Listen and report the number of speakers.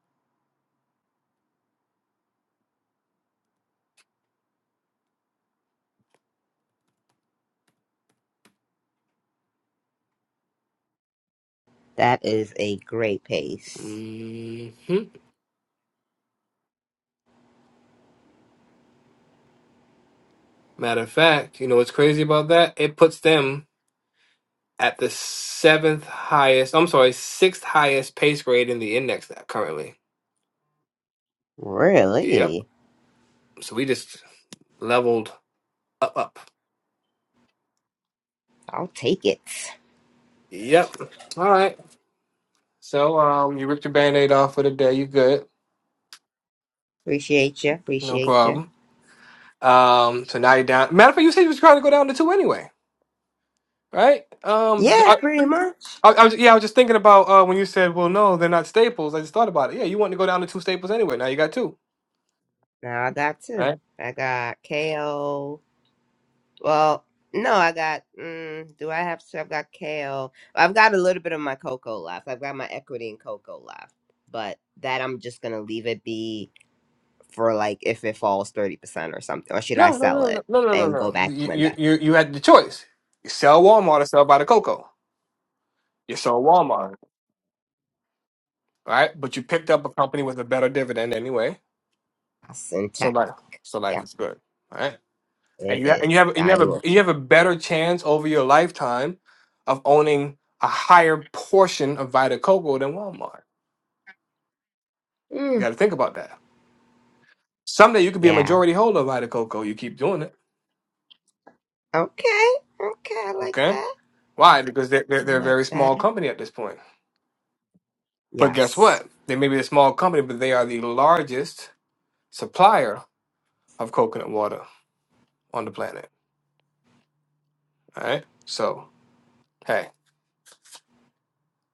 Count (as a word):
two